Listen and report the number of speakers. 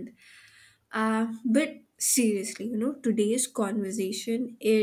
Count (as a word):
one